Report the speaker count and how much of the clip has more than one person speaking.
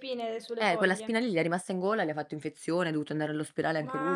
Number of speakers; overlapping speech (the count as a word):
two, about 21%